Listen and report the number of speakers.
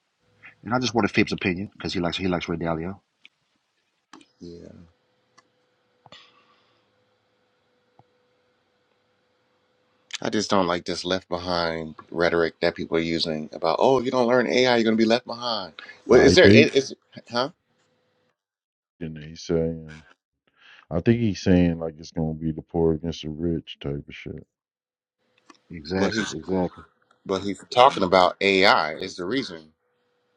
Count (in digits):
3